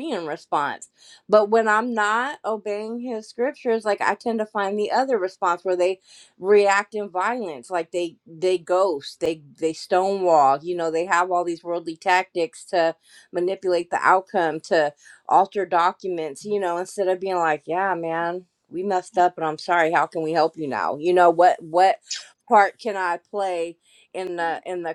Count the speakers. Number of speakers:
1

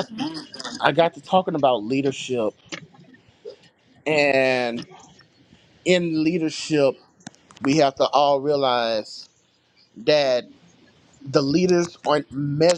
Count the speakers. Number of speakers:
1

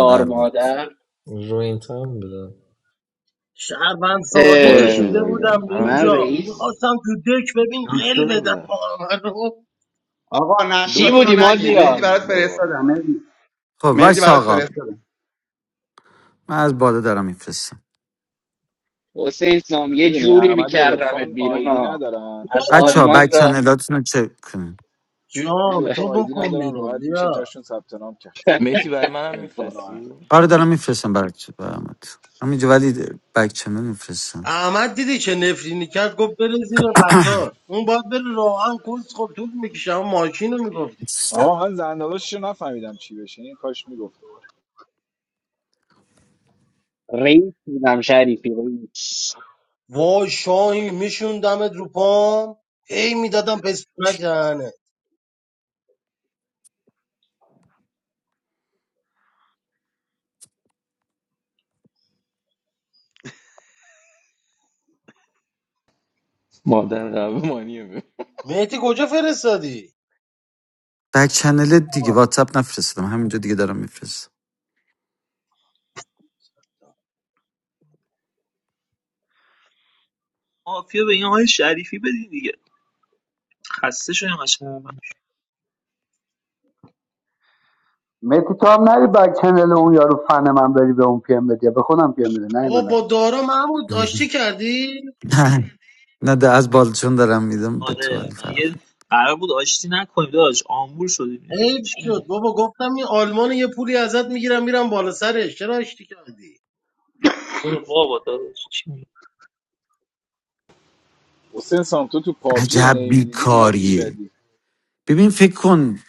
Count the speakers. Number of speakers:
9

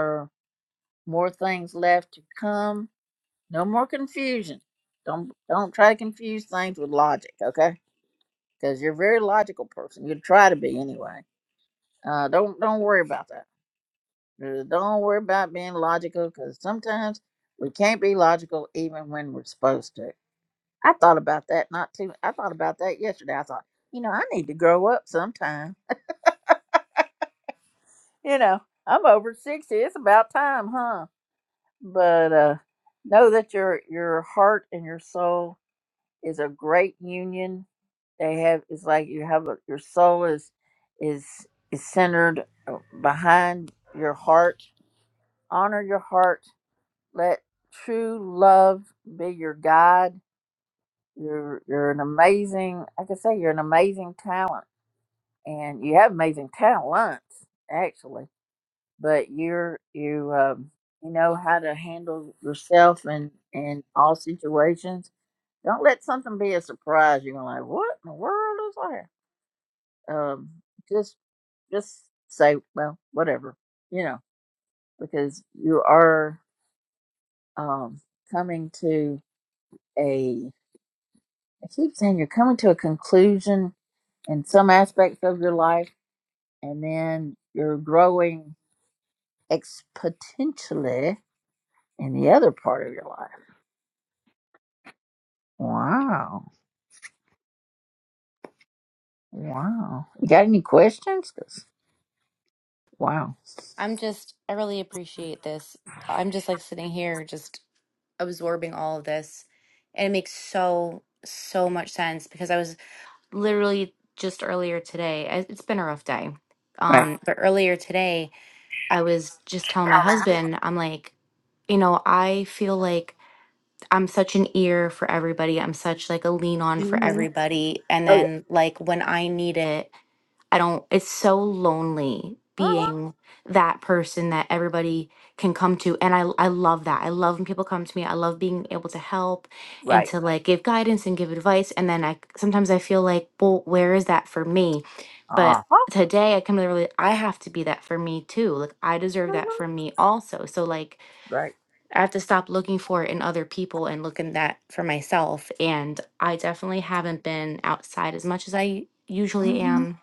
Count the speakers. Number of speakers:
2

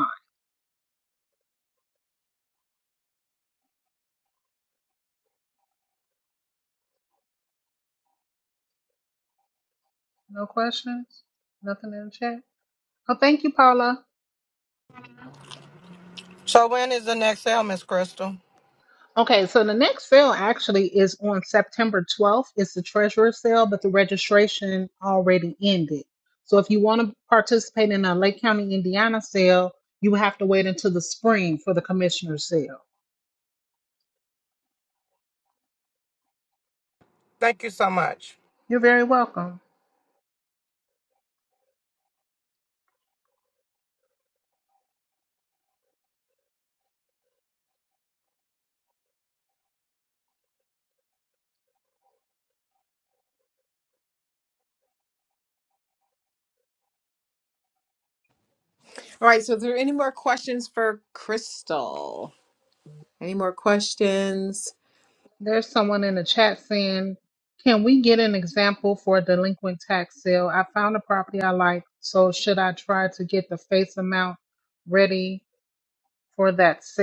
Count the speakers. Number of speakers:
3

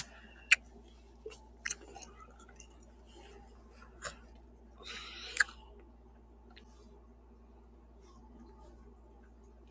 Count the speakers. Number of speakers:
0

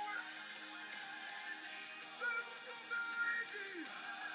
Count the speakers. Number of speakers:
0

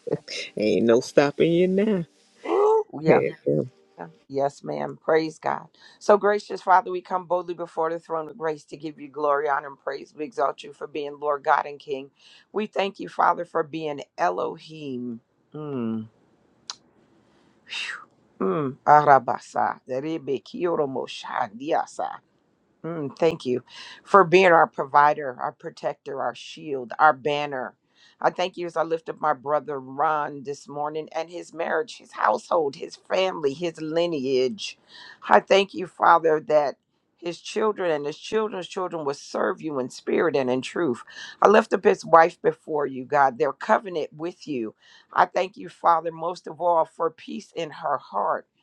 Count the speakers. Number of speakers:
2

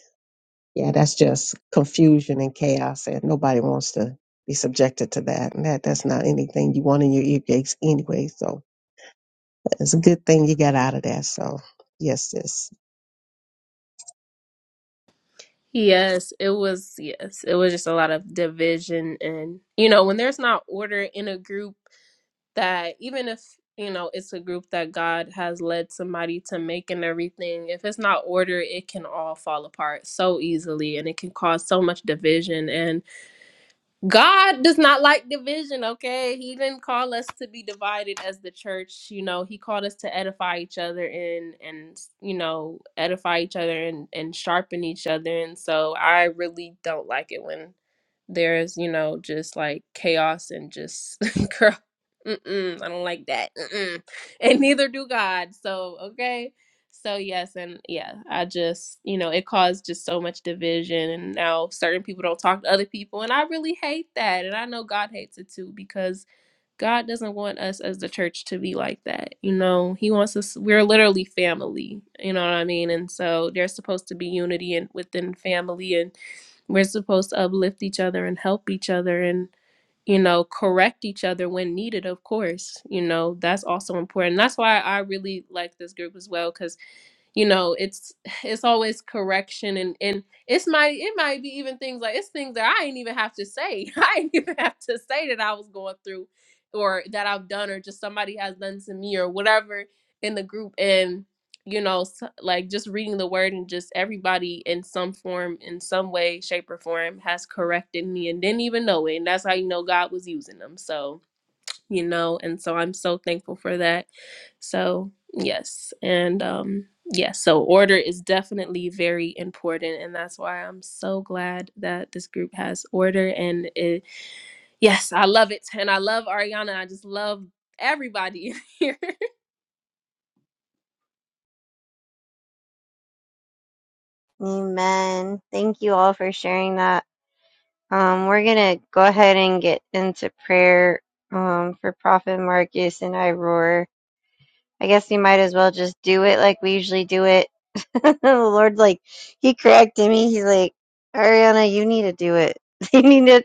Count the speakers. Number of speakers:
3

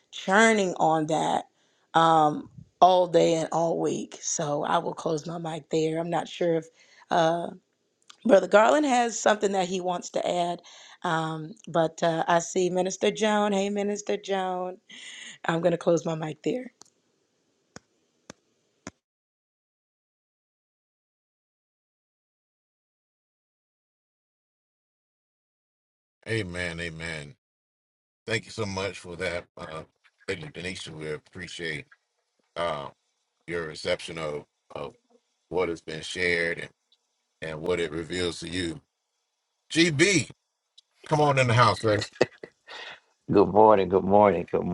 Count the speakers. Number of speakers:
3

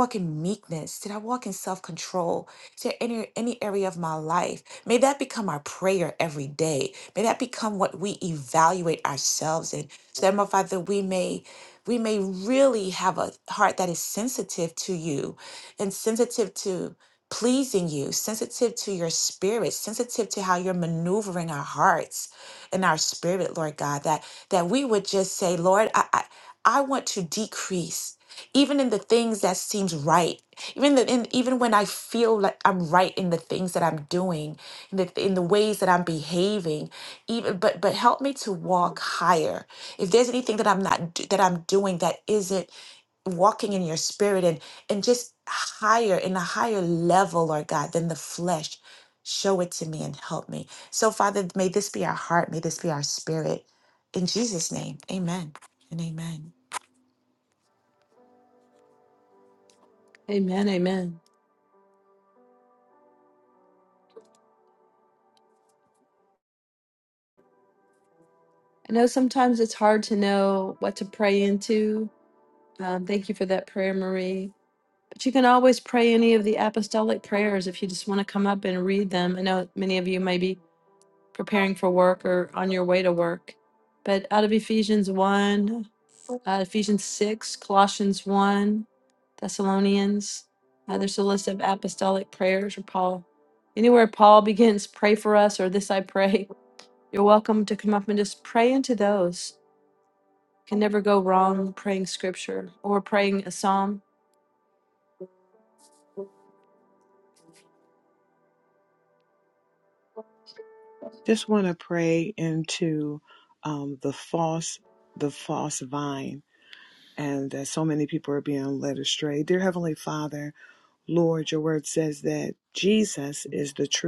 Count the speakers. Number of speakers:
3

